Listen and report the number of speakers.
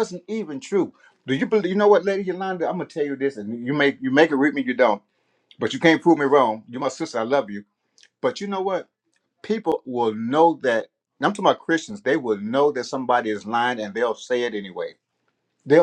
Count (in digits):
1